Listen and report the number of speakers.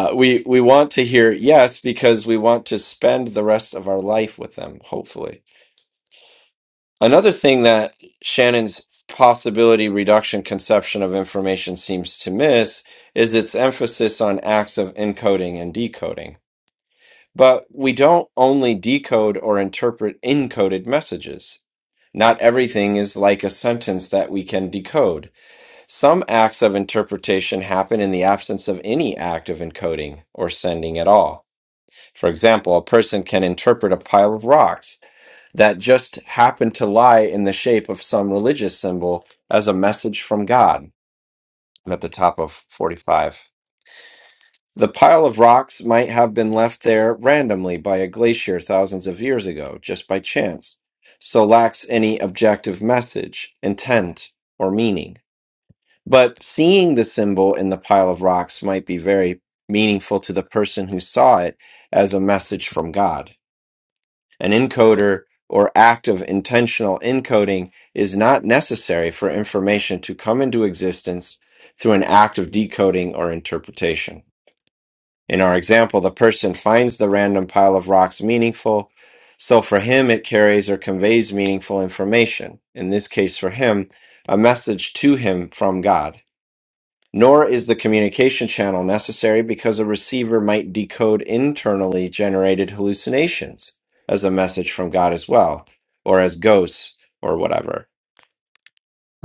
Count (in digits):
1